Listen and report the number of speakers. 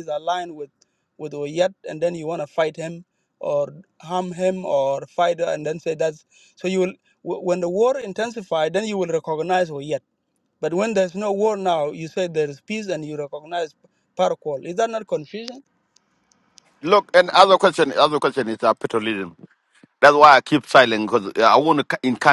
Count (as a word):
two